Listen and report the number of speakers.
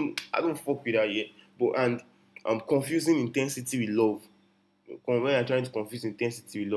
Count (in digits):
1